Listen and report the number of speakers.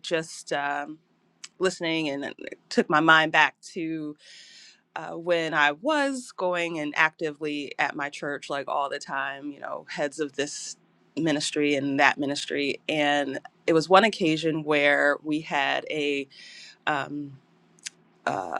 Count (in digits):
1